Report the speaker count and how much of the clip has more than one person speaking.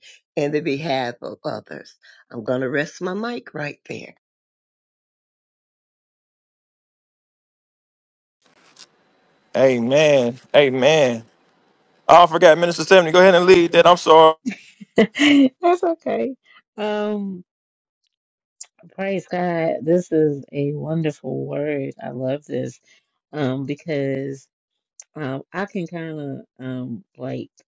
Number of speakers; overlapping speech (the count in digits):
3, no overlap